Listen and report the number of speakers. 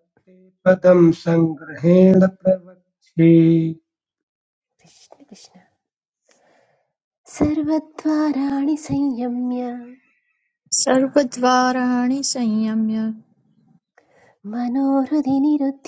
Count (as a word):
three